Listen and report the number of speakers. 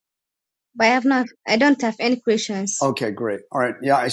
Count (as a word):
two